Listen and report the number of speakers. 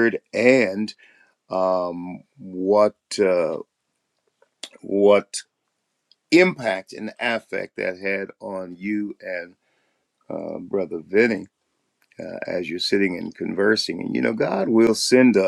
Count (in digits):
1